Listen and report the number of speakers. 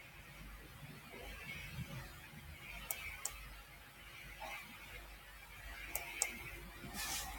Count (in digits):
0